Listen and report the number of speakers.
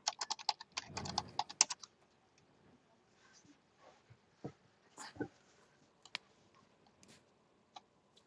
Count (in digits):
0